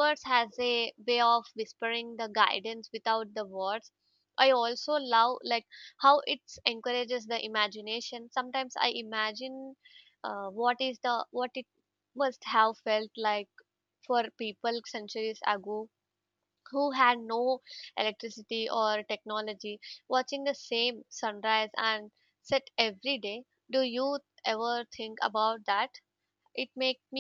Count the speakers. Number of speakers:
1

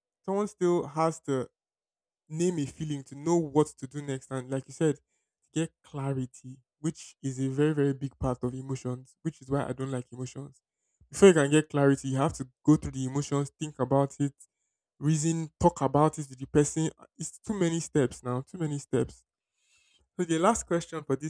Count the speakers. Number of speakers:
1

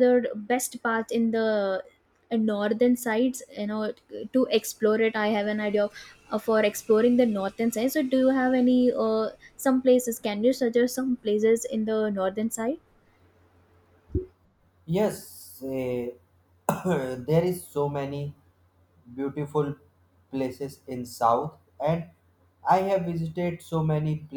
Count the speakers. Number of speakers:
2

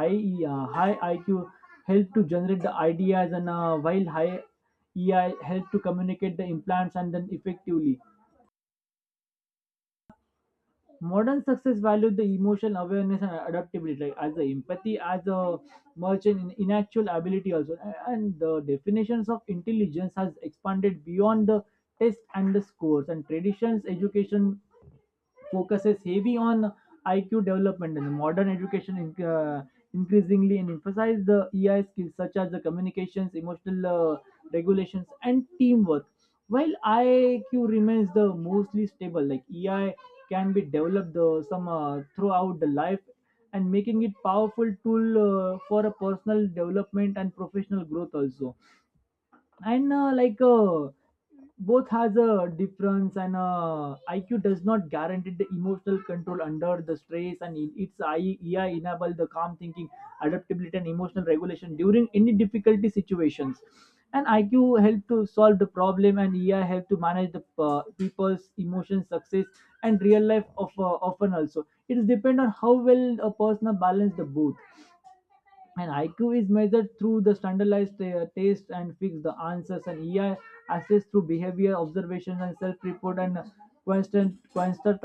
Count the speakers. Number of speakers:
1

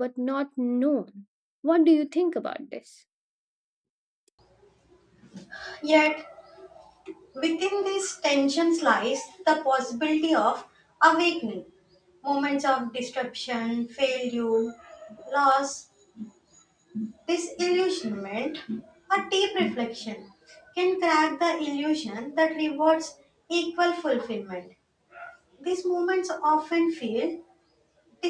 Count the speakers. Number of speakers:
2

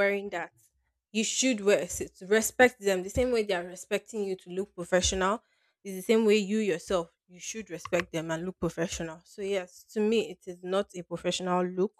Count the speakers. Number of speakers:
1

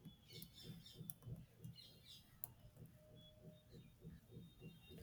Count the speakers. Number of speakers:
0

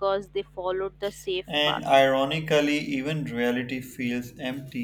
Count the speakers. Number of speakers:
2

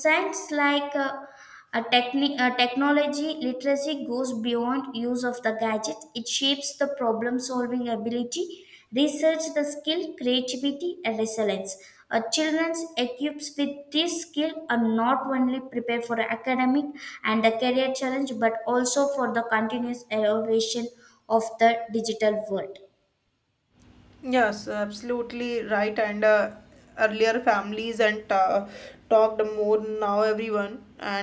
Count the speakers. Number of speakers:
2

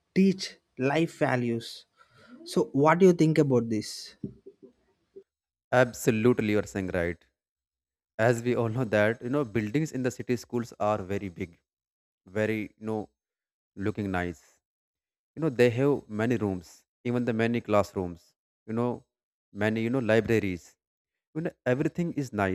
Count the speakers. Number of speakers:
2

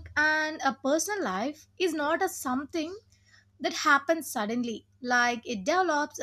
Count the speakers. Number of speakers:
1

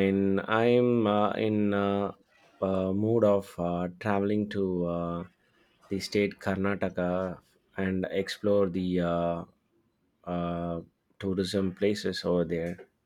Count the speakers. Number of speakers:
1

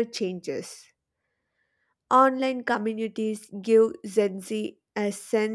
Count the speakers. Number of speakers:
1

